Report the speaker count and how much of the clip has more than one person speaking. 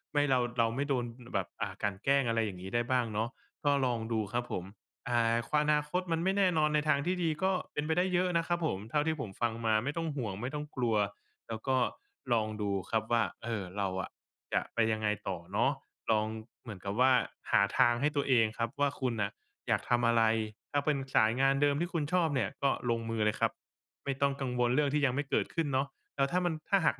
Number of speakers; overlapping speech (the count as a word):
one, no overlap